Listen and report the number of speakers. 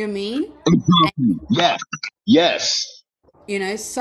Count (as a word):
two